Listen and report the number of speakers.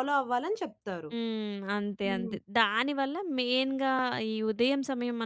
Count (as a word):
two